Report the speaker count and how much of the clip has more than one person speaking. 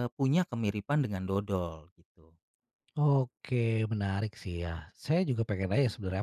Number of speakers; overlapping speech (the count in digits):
2, no overlap